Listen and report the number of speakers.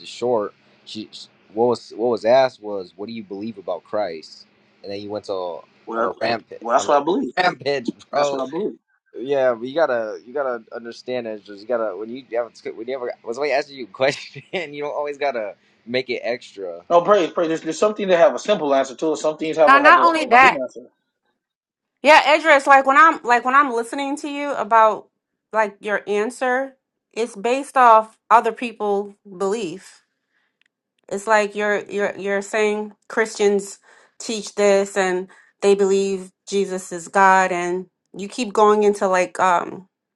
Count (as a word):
three